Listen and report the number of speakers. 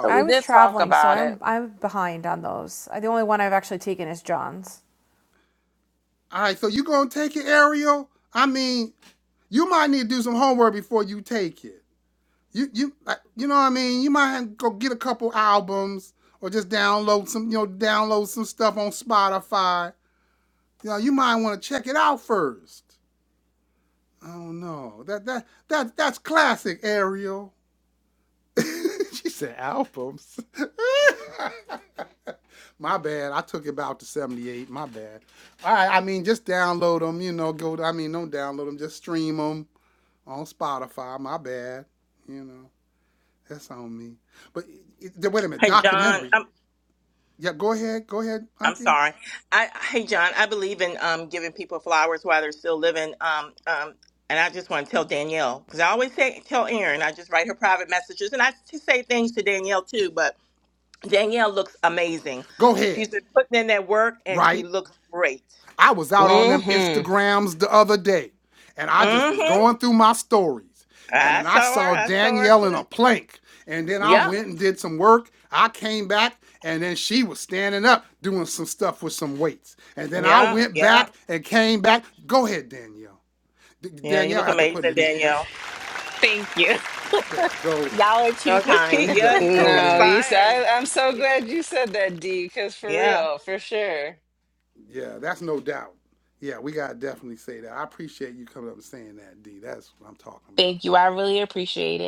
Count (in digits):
5